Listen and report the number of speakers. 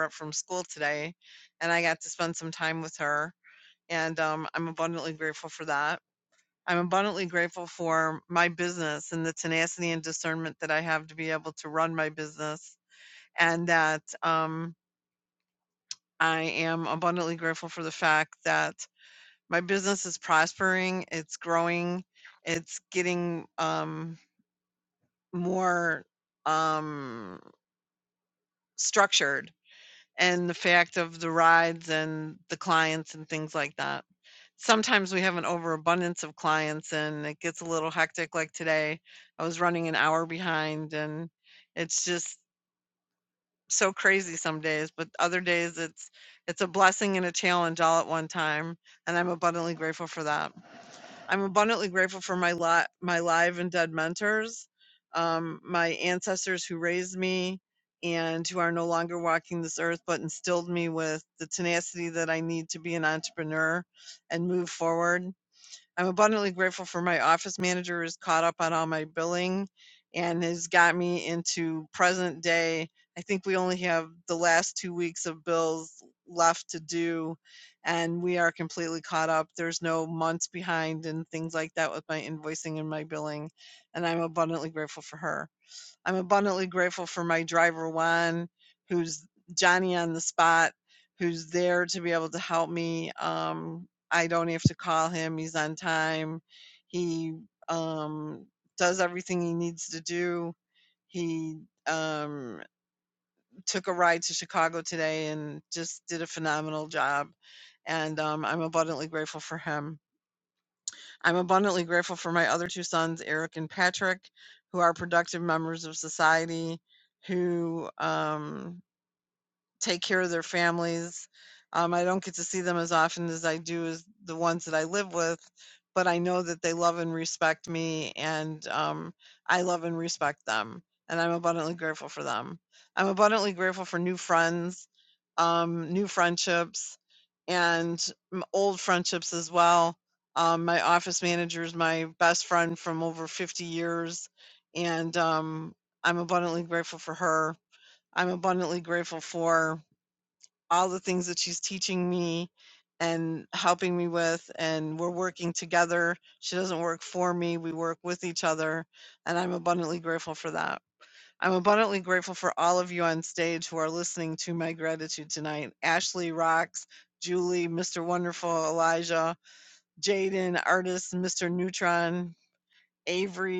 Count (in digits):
1